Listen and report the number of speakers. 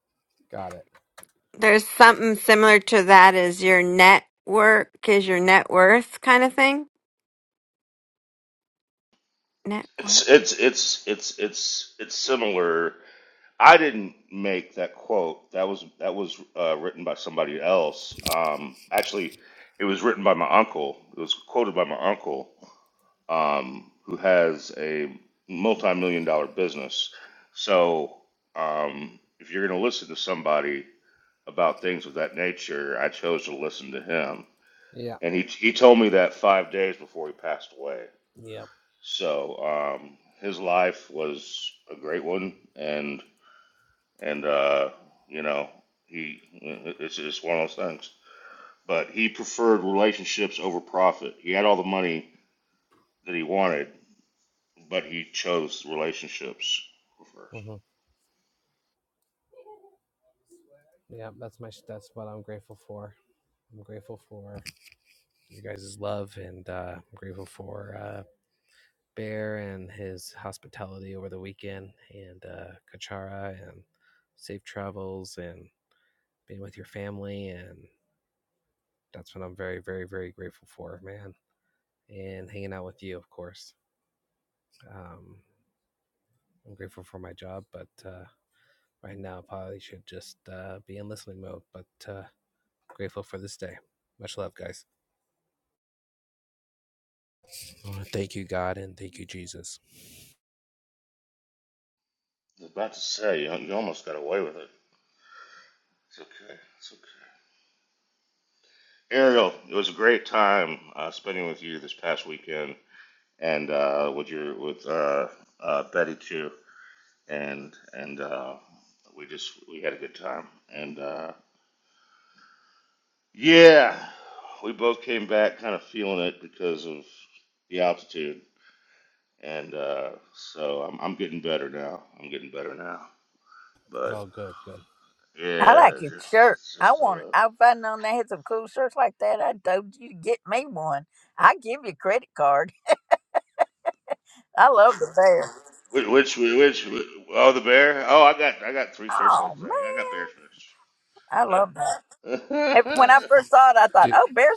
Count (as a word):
four